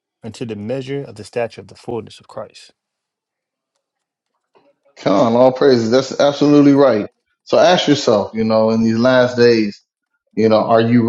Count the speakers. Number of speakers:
2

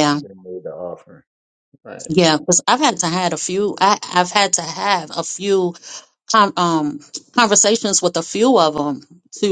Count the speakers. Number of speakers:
2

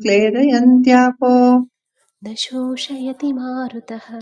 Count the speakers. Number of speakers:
2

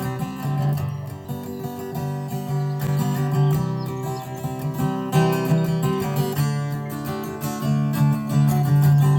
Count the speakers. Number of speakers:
0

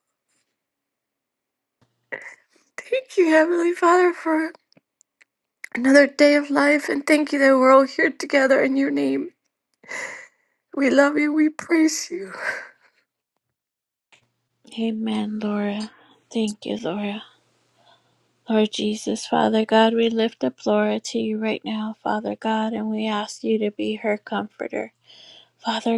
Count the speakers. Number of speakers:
2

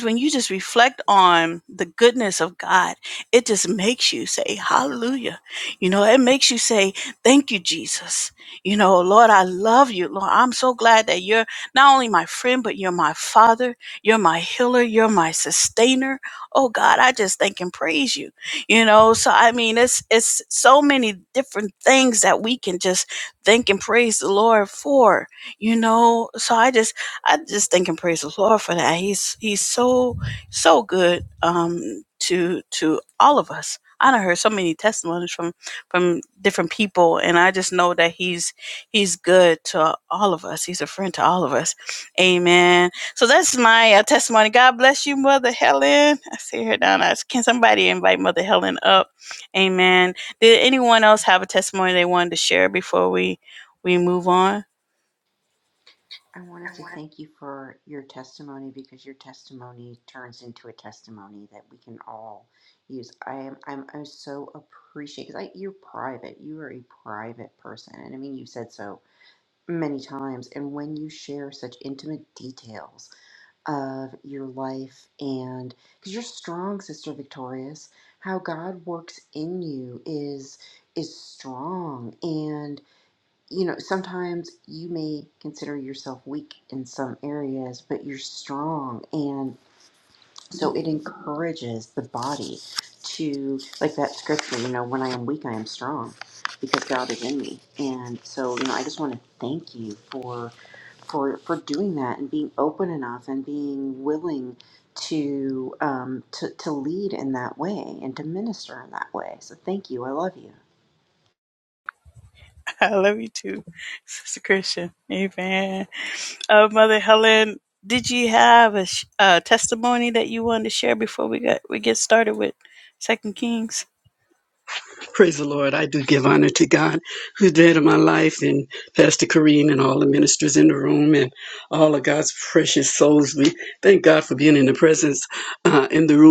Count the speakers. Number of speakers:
3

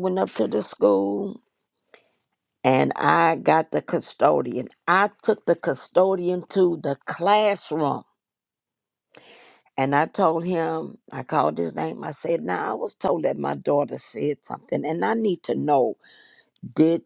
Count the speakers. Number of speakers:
1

